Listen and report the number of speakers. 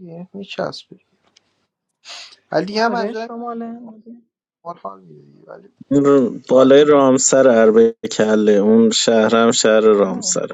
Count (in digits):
3